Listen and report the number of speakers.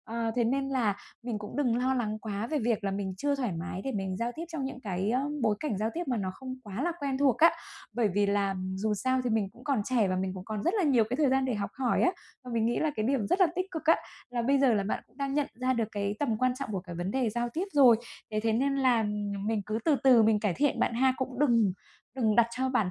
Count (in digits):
1